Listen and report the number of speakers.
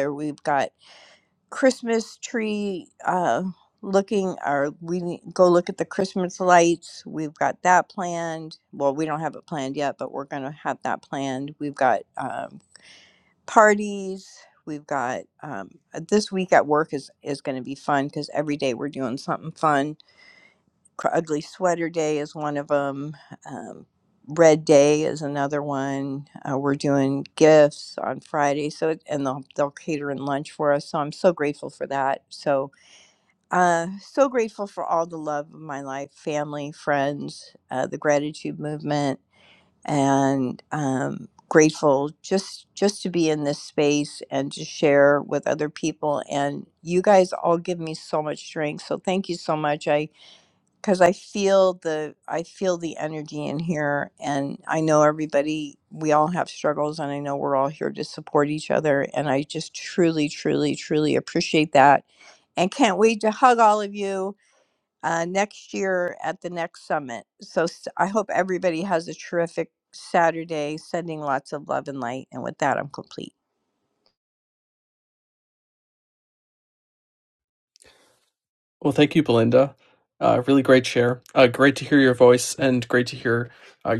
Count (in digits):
2